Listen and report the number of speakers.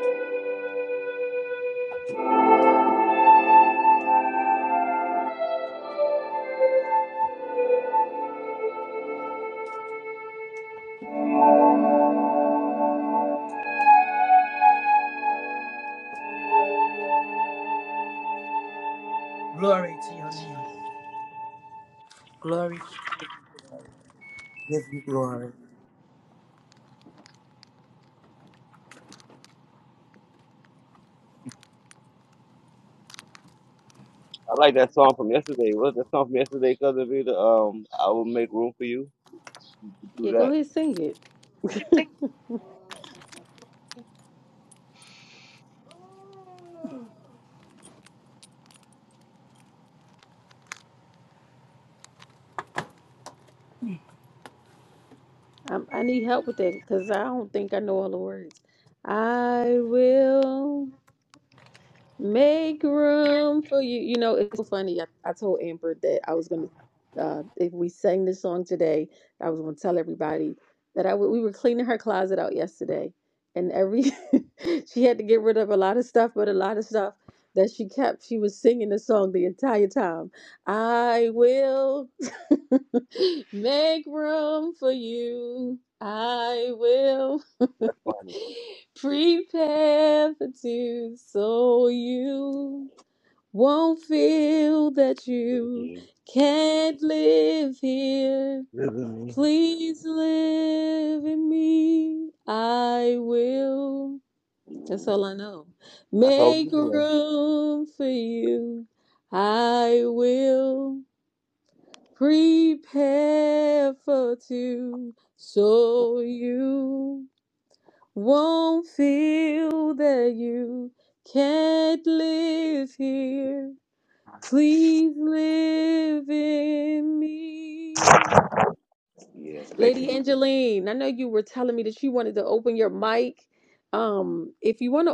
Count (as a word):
three